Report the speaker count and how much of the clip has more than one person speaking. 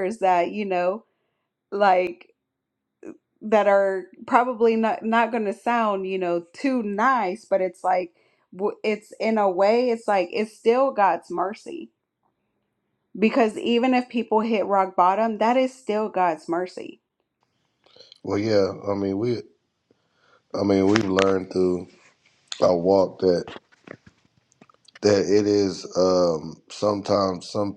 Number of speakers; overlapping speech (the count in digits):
2, no overlap